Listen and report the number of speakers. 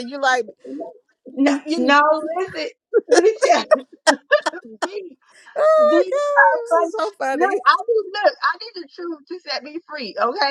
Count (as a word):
two